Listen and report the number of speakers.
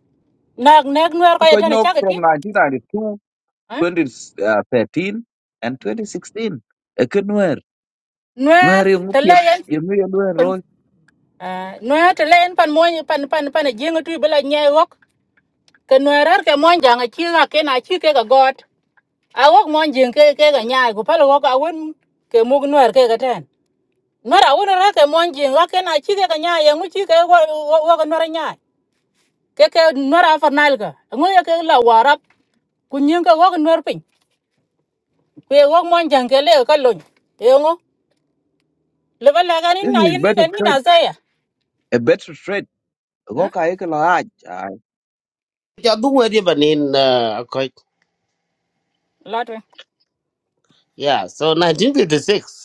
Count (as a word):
three